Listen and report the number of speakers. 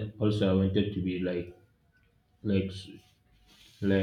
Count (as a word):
one